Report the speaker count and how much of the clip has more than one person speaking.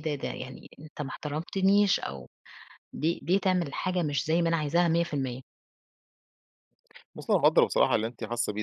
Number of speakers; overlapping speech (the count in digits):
2, no overlap